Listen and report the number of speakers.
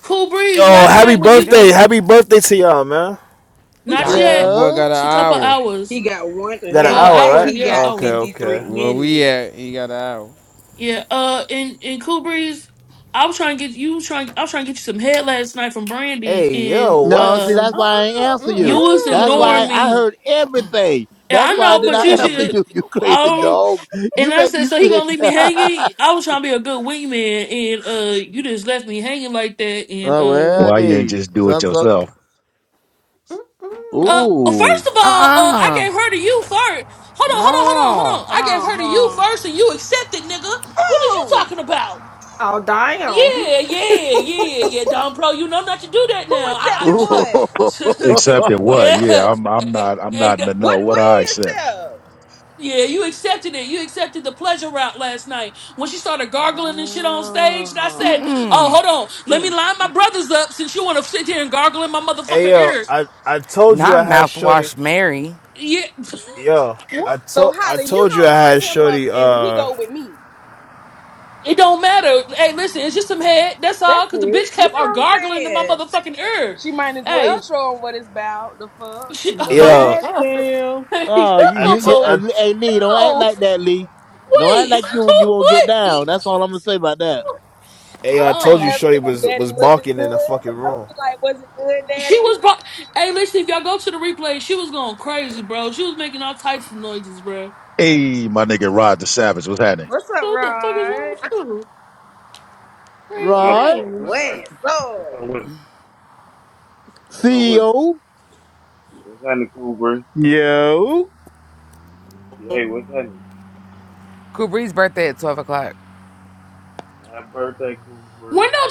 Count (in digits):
10